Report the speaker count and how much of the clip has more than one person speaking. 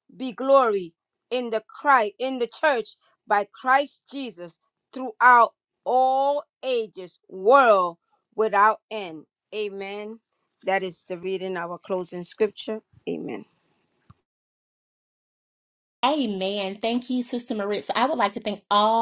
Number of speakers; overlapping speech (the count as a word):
two, no overlap